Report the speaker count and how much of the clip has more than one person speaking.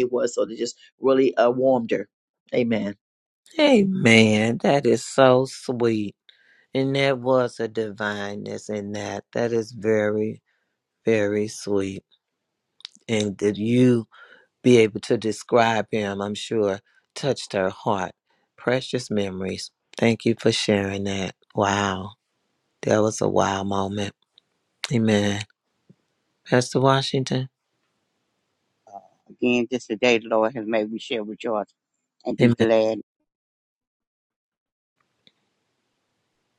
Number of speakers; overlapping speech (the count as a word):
three, about 1%